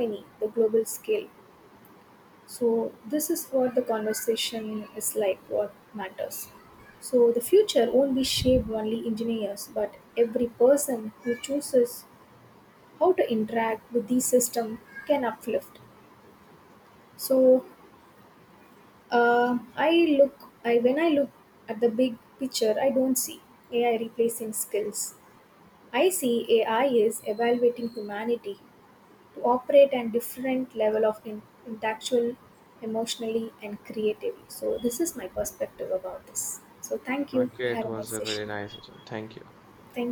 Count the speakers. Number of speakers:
2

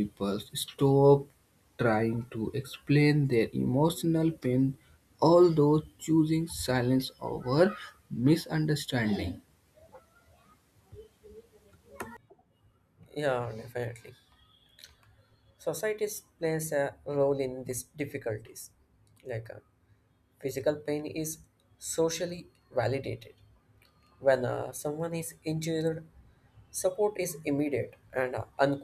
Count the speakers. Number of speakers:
2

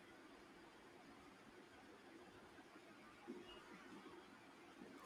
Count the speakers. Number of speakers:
0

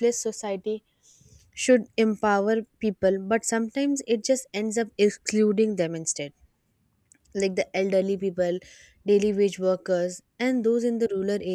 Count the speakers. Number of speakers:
1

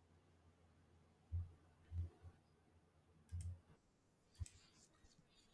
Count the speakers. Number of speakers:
0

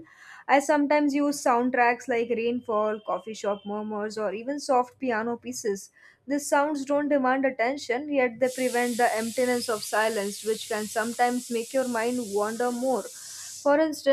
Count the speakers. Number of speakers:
1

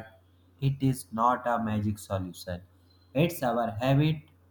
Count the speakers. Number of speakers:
1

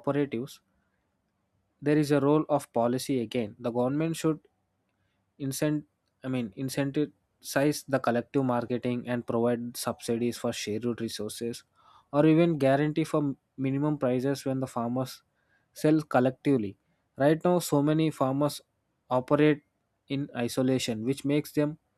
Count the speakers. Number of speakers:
1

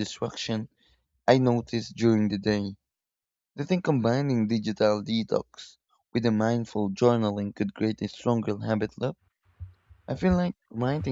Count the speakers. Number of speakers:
1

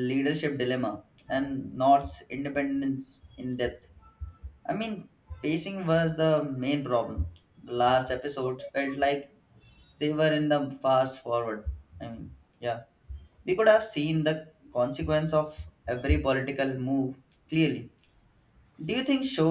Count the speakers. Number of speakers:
1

